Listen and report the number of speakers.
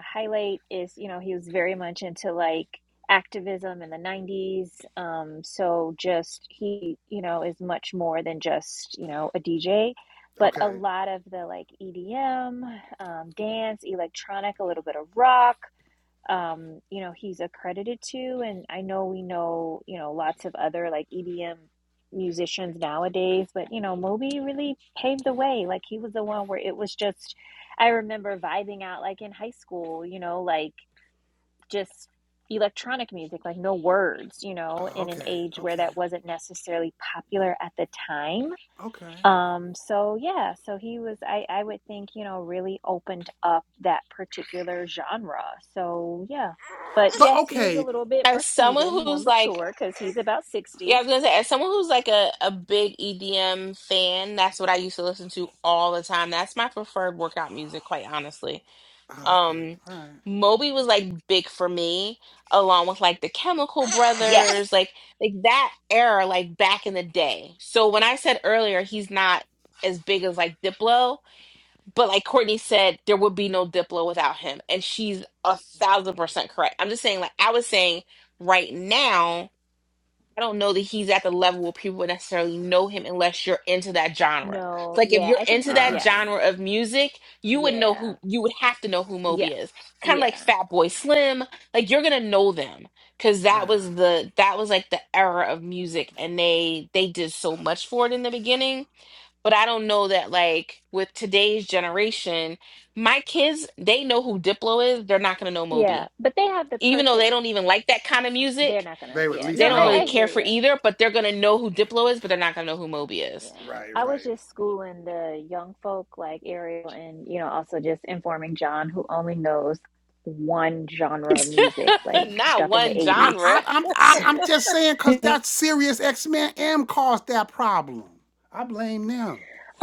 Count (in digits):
3